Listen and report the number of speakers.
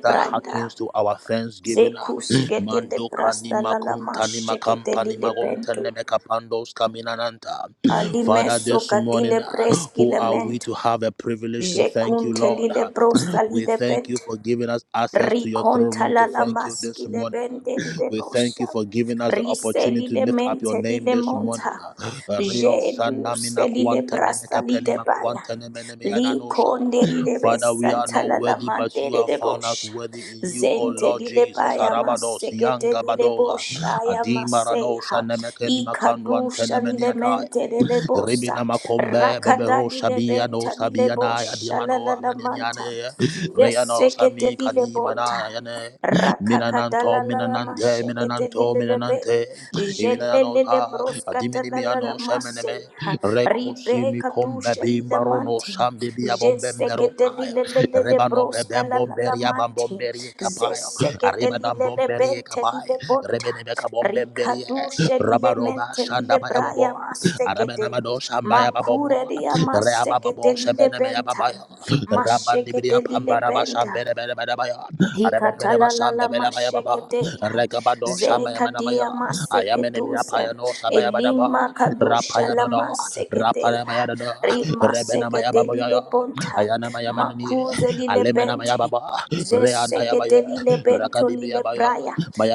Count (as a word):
two